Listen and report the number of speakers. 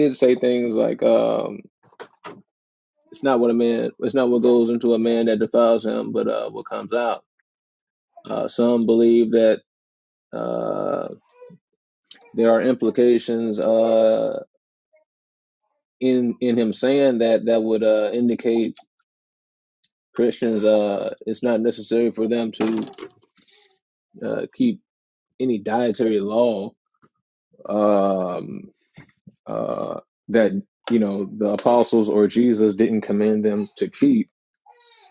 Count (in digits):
1